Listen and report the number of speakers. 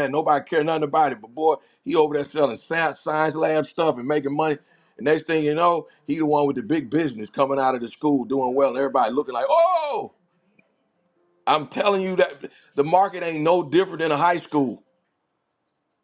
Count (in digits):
1